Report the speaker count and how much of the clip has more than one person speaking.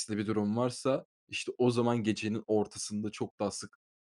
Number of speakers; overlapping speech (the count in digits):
1, no overlap